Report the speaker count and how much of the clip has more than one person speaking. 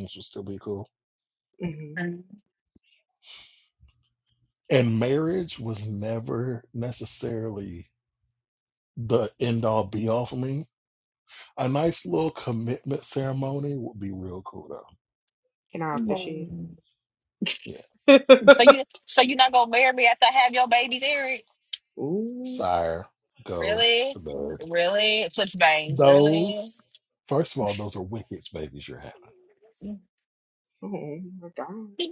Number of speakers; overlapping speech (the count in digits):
3, about 6%